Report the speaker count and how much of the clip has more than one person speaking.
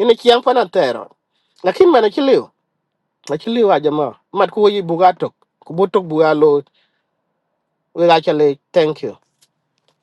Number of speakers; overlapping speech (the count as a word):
one, no overlap